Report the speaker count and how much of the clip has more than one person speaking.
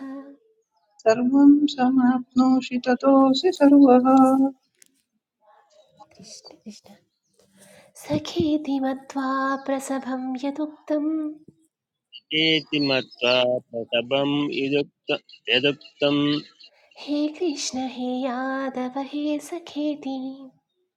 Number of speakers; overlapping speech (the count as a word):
three, no overlap